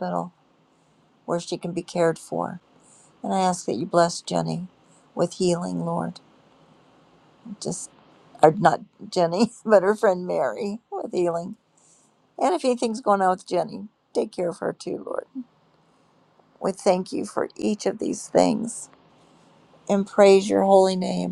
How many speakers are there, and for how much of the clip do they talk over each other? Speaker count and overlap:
1, no overlap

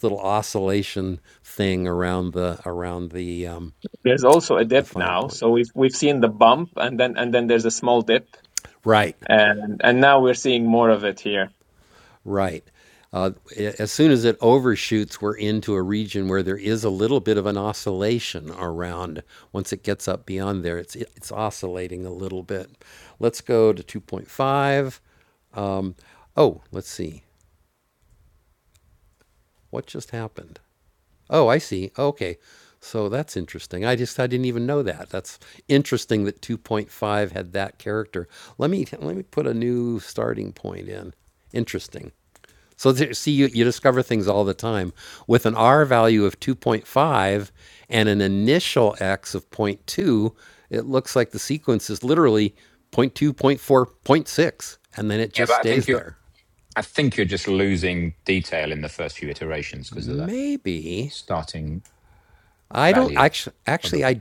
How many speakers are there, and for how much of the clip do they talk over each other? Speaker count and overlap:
3, about 4%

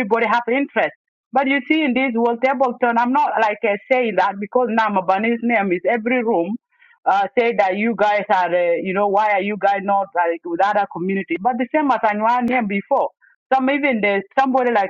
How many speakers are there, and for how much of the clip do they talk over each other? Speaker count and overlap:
1, no overlap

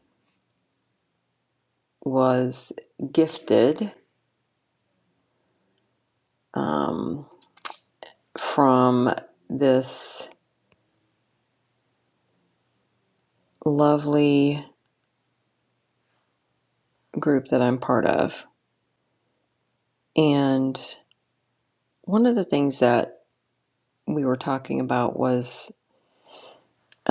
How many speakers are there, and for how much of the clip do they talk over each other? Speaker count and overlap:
1, no overlap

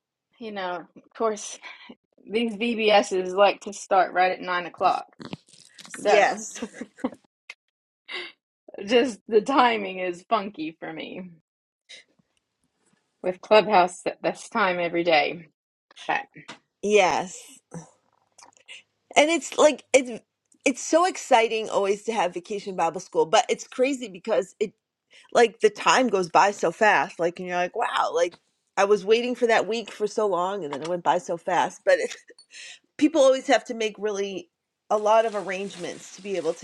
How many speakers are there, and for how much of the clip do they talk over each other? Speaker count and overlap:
2, about 1%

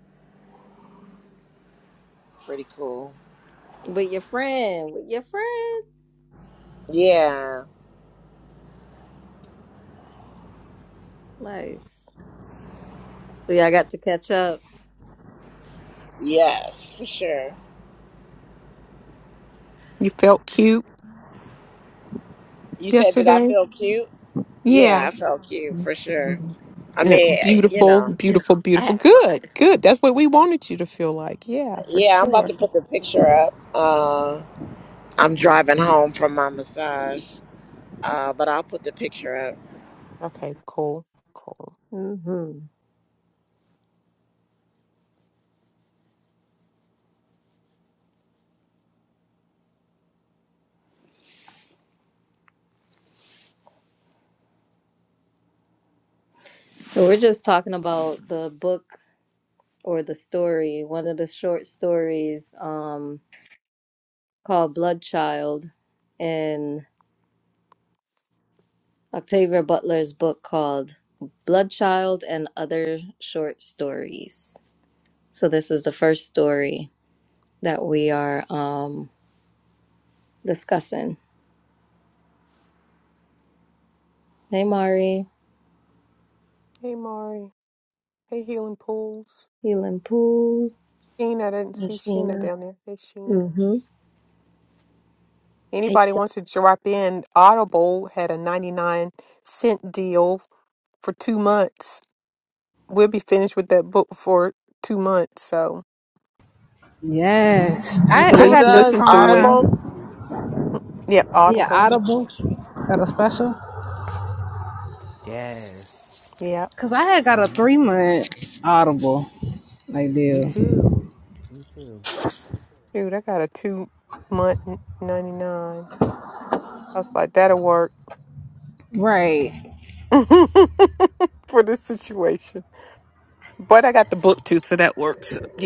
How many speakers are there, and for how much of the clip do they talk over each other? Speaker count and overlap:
5, about 5%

